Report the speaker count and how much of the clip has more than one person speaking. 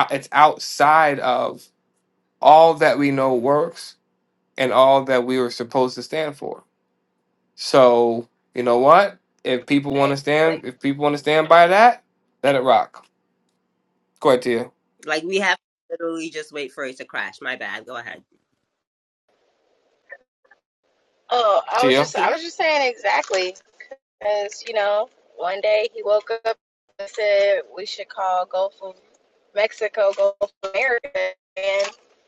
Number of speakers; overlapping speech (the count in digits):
3, about 3%